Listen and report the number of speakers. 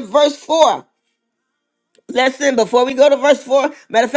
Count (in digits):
1